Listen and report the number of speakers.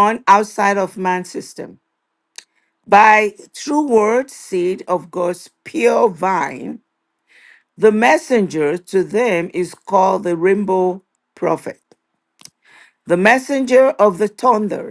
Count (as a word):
one